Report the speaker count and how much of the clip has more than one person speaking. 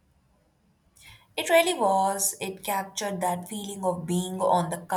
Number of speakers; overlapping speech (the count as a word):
one, no overlap